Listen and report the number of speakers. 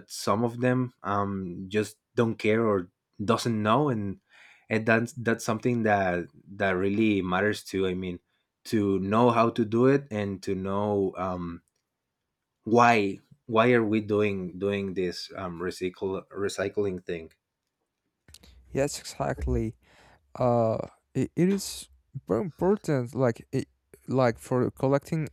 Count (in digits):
2